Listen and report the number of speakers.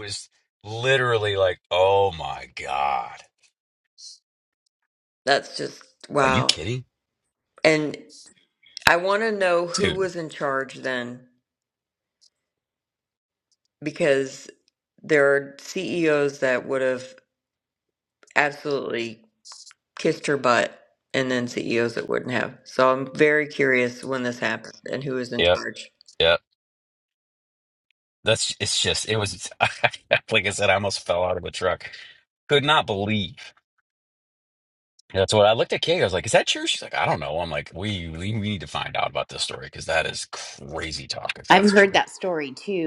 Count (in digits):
3